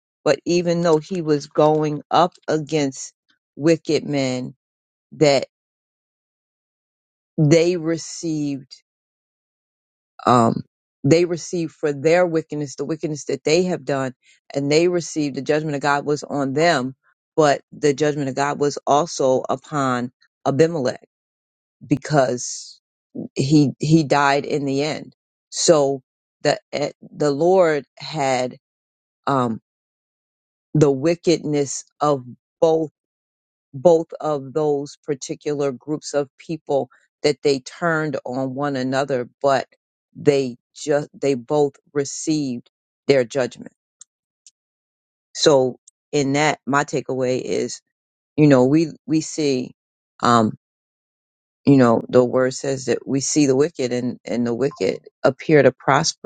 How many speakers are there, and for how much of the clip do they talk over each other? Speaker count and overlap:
one, no overlap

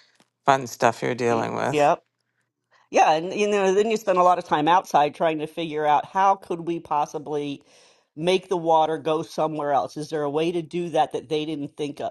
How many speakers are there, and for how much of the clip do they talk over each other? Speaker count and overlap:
two, about 5%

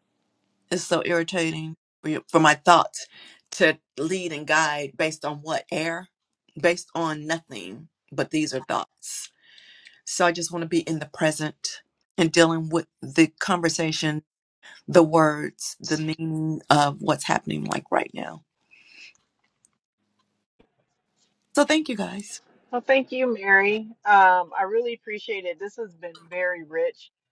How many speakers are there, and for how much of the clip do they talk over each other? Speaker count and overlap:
two, no overlap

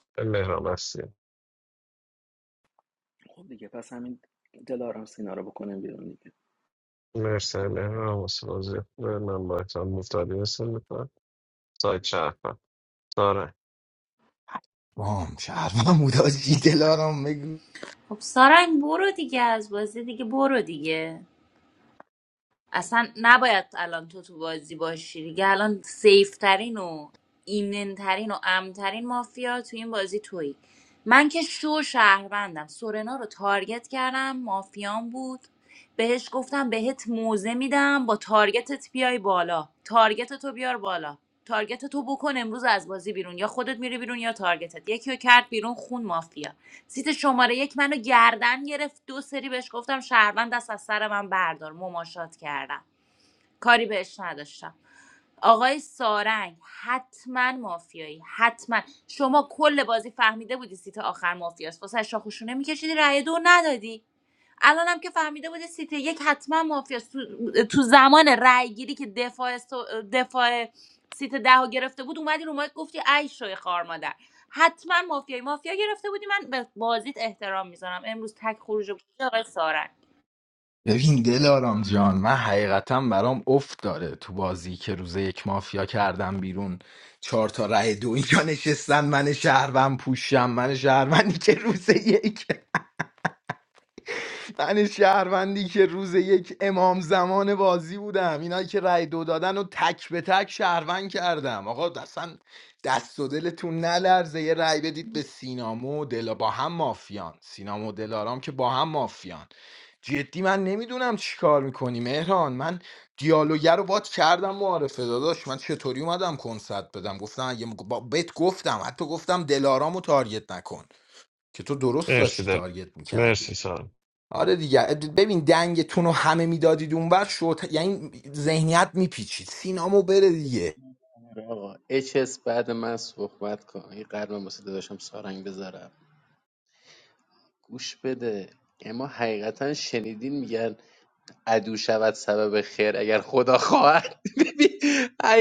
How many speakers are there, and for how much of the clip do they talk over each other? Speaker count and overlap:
five, about 1%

